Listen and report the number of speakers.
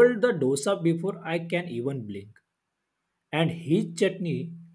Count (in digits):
1